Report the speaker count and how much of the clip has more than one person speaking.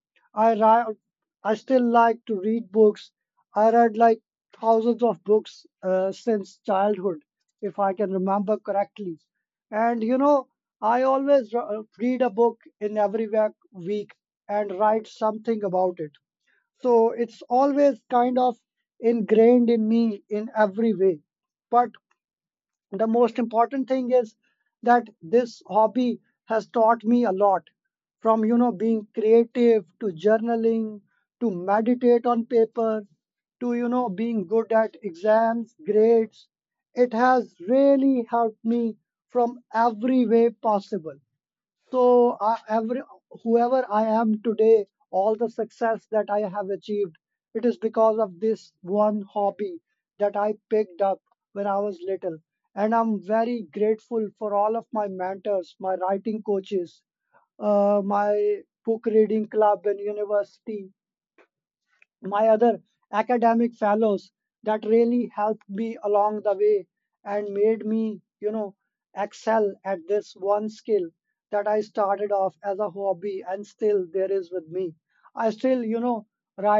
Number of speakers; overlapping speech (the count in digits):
1, no overlap